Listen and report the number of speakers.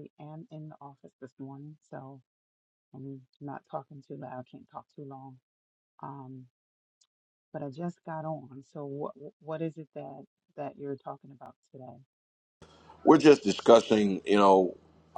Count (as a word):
two